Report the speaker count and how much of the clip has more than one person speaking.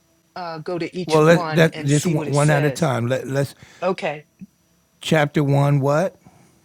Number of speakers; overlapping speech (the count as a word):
two, about 27%